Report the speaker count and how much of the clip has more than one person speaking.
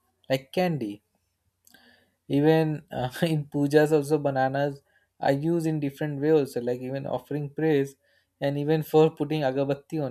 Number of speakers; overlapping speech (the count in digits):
1, no overlap